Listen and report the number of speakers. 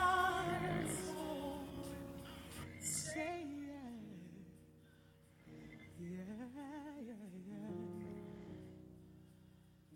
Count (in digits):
0